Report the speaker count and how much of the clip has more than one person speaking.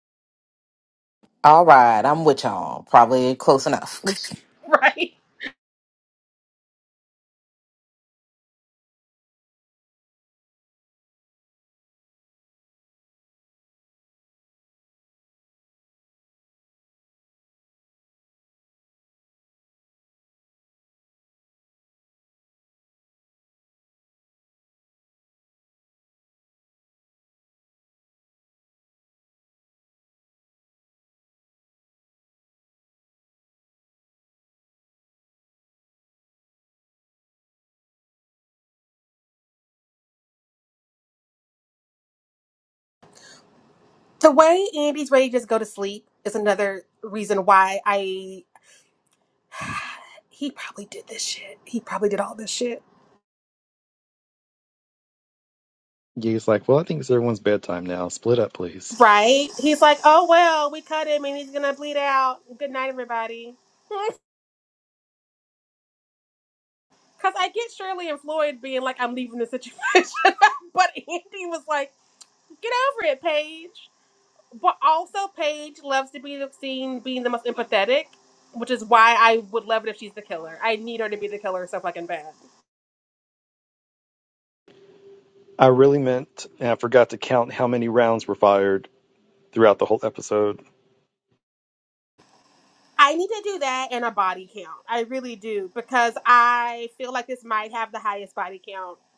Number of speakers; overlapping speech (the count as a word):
three, no overlap